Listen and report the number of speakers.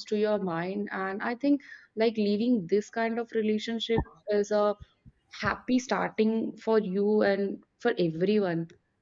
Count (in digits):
1